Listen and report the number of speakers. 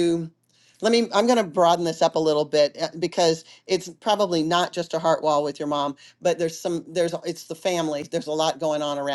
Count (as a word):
one